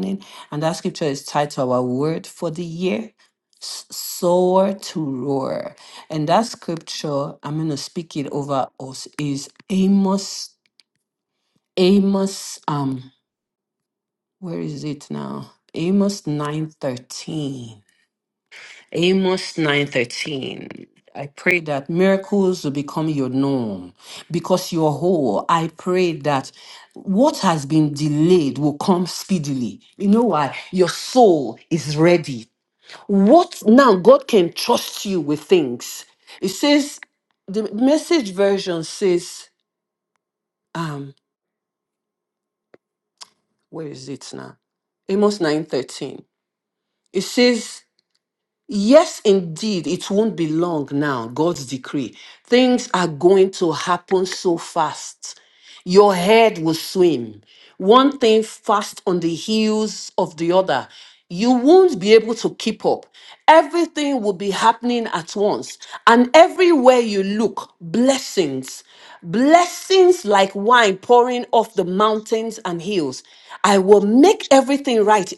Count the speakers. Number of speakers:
1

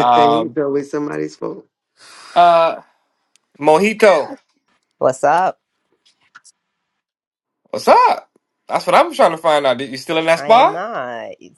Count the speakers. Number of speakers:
3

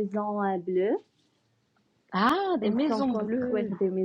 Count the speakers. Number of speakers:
2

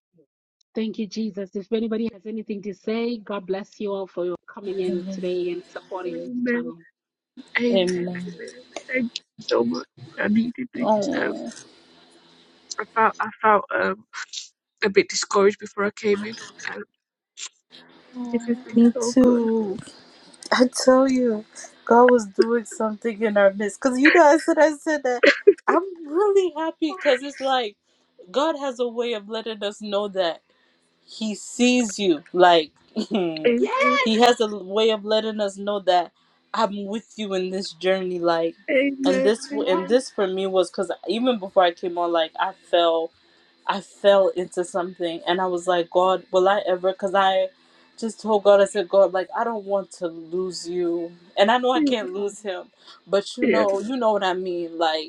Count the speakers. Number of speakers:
3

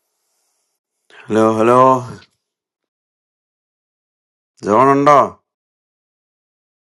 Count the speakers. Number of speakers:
1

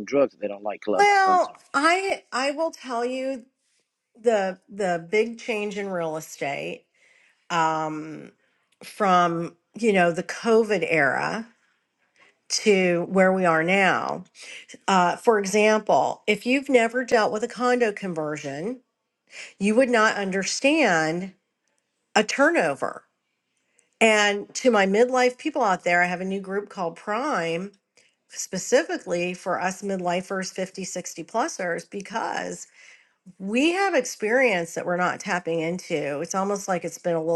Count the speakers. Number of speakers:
2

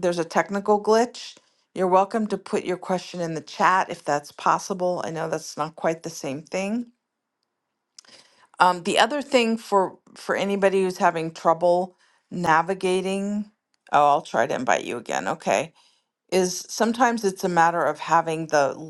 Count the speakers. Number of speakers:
1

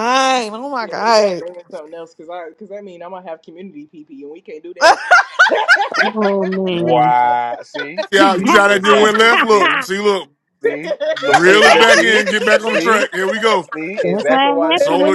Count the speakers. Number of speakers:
5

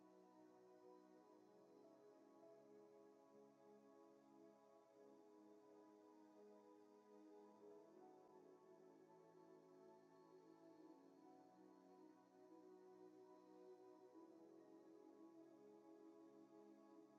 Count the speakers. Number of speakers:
0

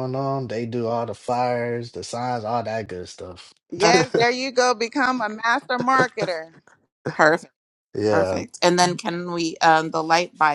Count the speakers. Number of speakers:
3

